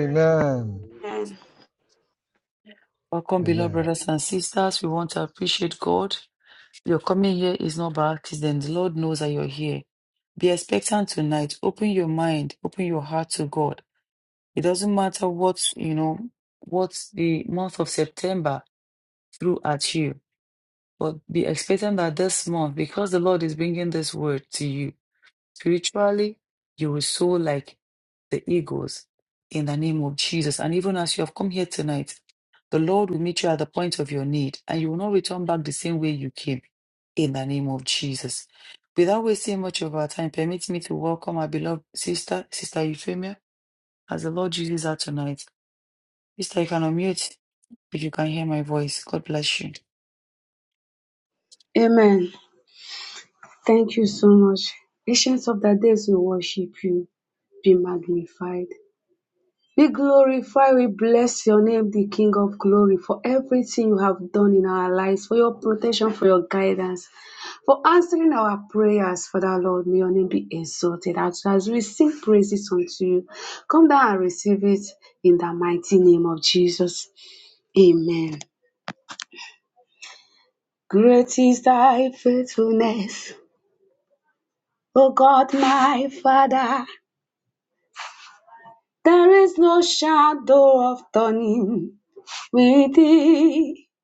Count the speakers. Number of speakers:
3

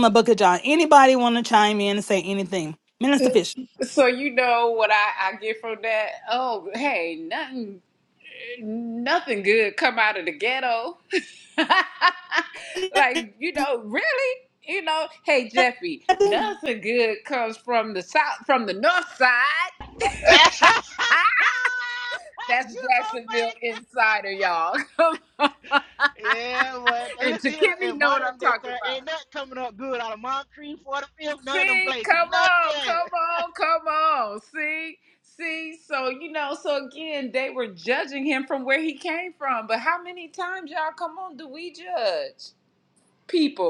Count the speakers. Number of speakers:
3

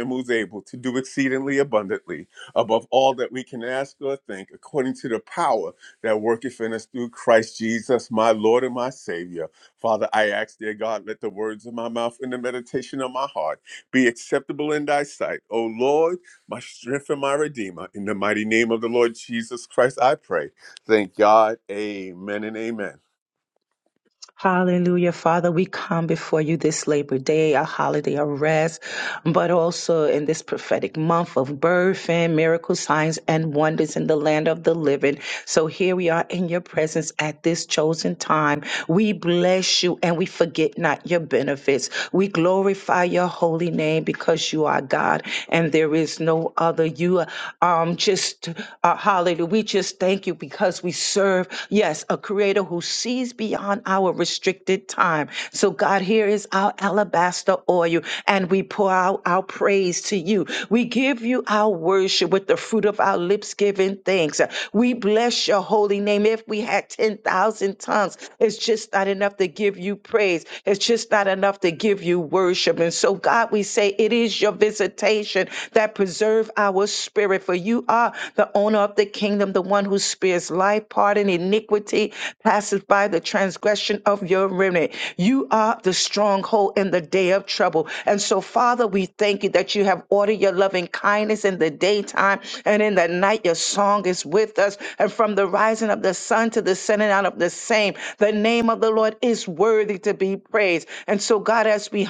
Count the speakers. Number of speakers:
2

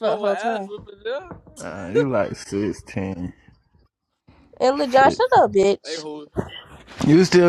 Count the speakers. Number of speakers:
3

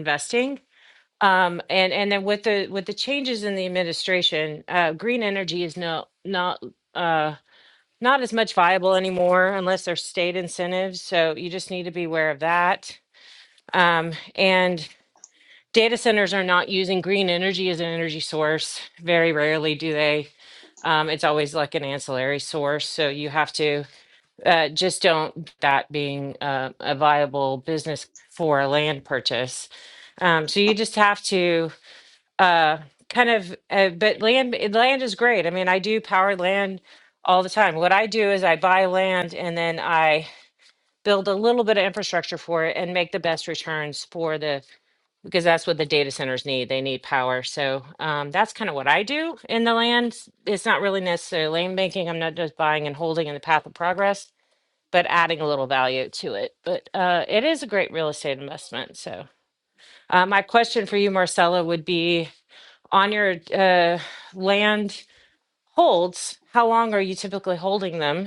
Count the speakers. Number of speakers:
1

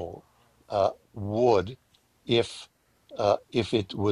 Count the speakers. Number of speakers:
1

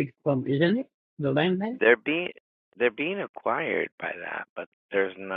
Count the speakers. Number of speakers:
2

